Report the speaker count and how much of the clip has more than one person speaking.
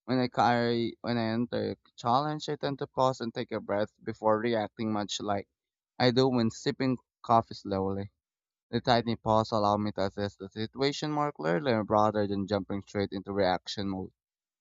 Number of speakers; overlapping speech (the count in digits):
1, no overlap